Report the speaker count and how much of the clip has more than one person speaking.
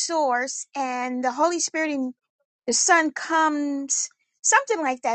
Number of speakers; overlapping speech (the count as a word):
one, no overlap